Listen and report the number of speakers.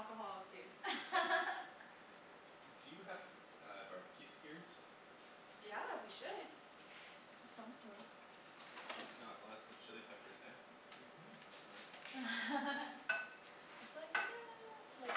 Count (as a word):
two